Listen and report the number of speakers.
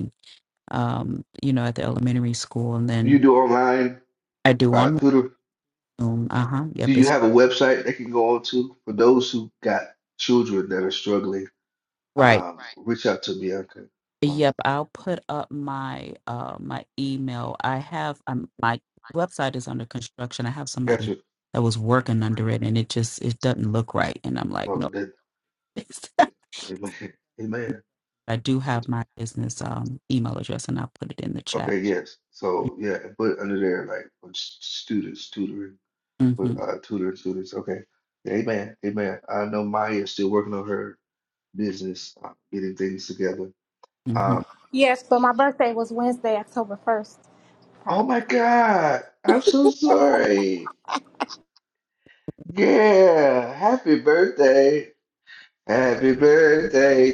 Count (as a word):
three